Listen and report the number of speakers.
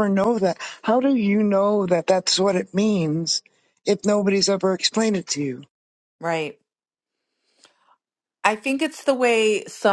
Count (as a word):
two